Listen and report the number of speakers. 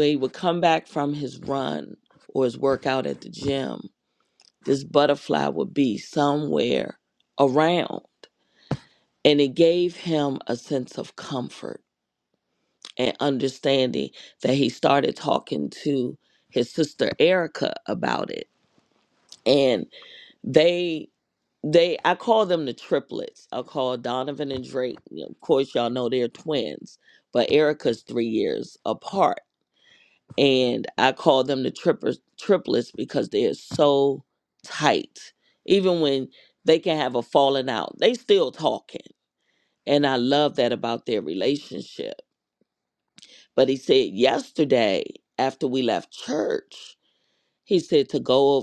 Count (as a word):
one